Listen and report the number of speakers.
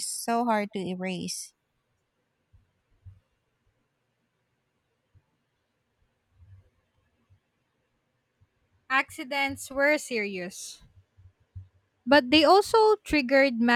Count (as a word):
two